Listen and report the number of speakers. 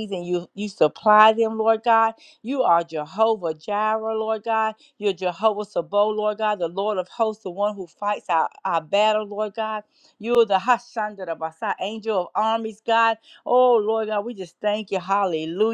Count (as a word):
one